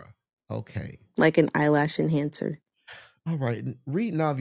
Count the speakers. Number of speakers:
two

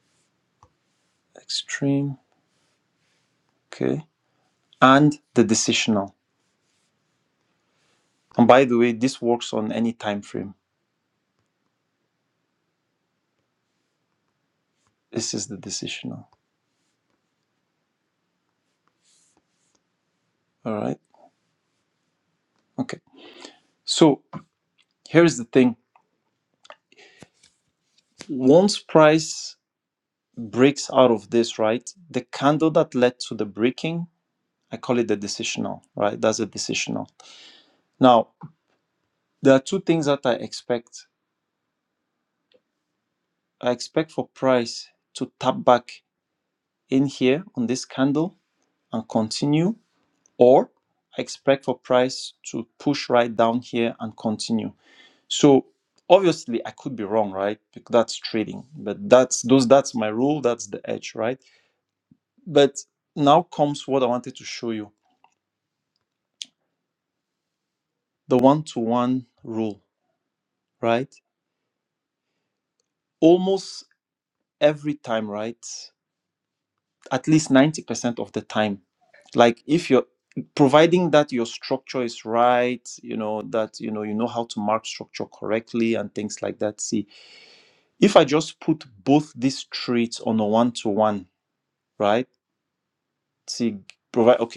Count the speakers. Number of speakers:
one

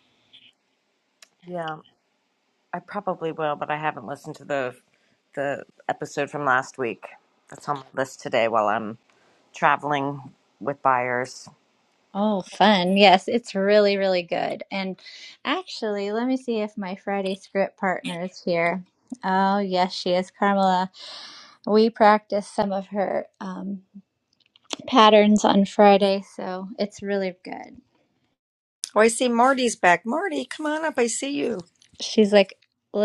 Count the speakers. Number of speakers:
three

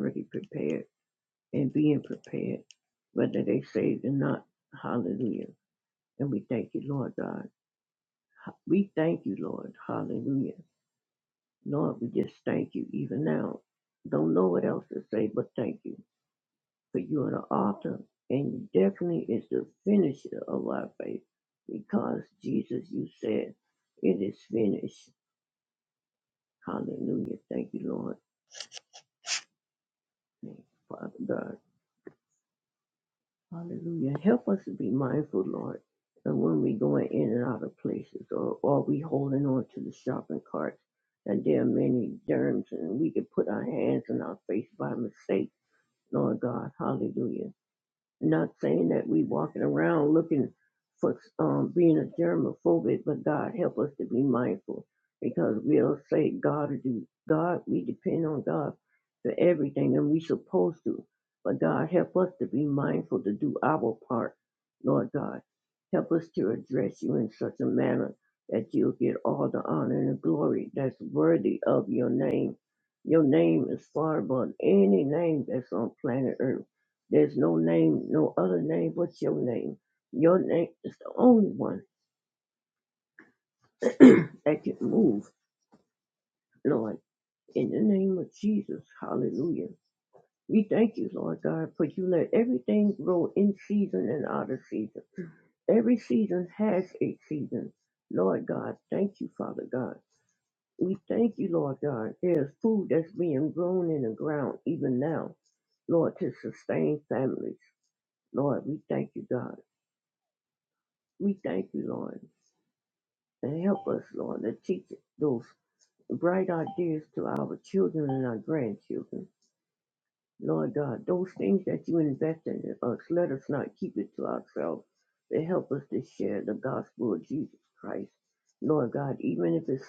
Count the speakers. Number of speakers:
one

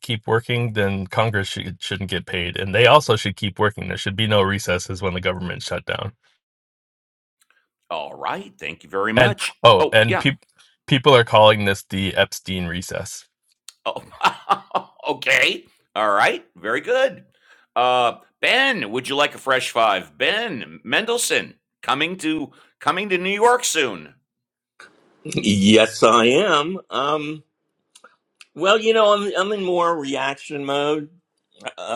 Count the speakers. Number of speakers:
three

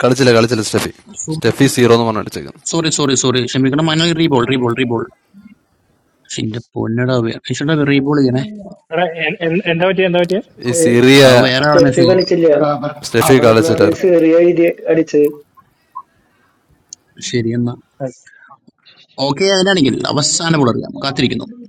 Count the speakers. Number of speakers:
five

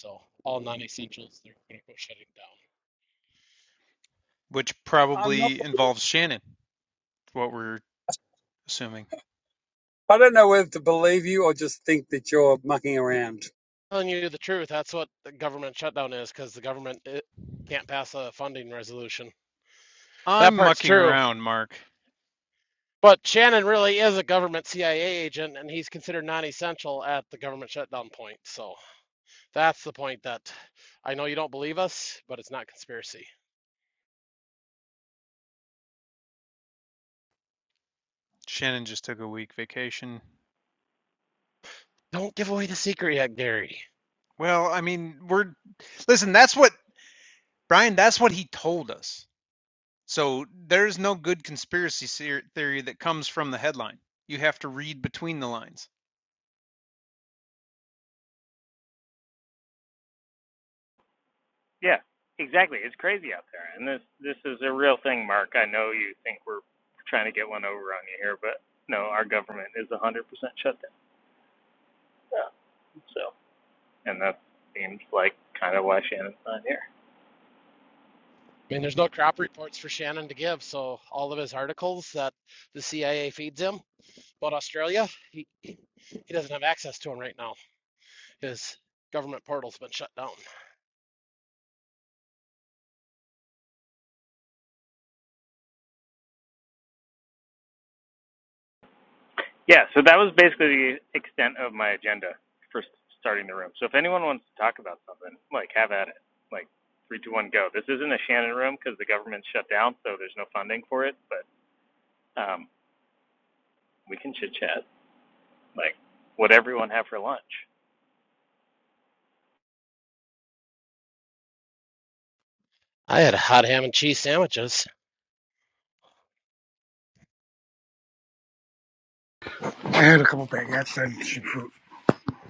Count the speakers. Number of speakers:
five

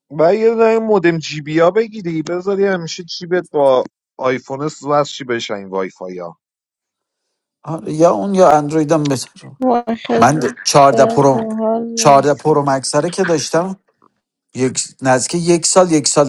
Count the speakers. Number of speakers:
three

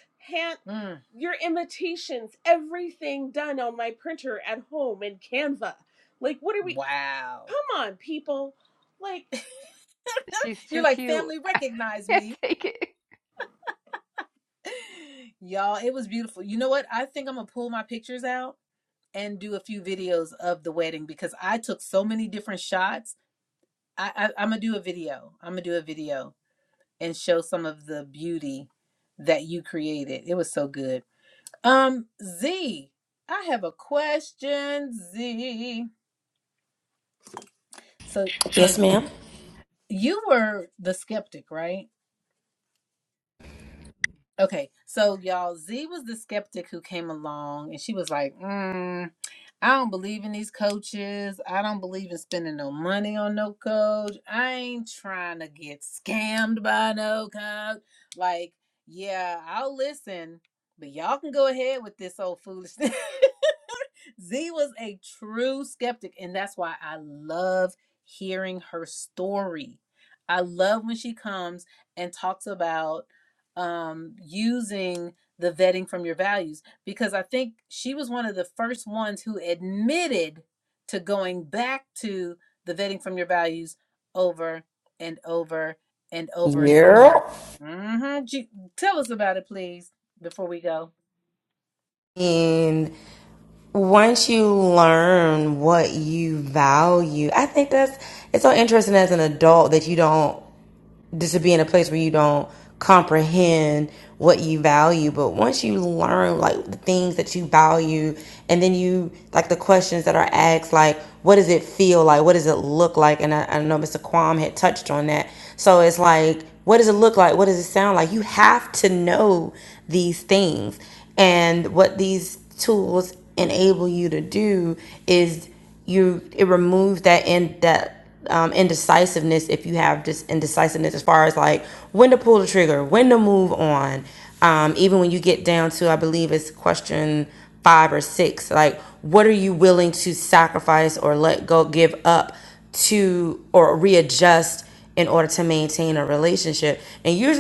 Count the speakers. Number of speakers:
four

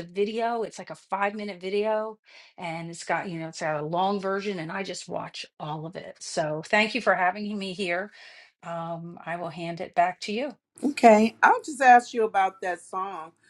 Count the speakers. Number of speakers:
two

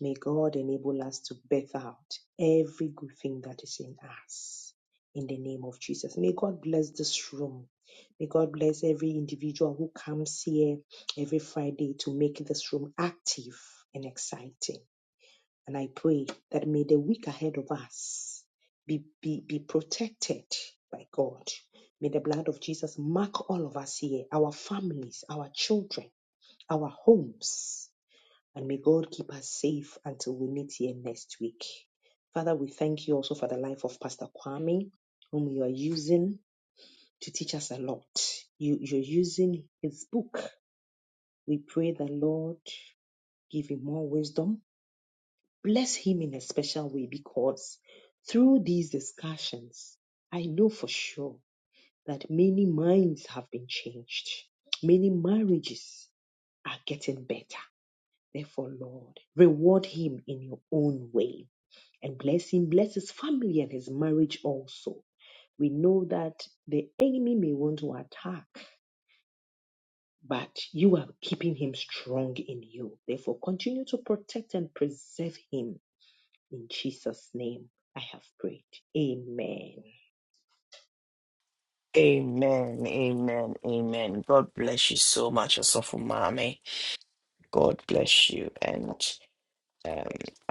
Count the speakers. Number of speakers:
two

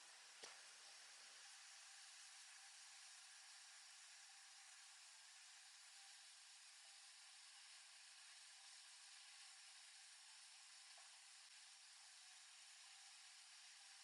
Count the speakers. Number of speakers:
zero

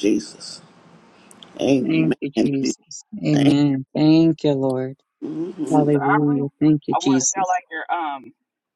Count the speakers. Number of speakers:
three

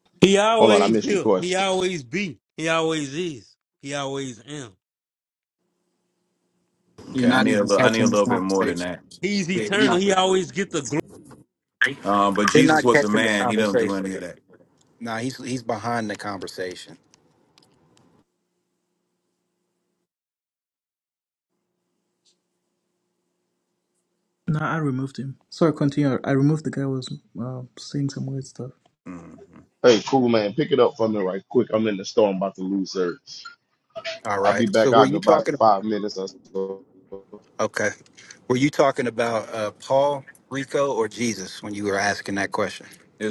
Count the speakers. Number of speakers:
five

